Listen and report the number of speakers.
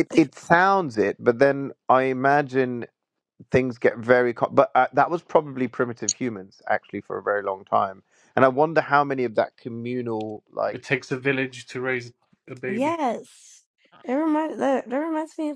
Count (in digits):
3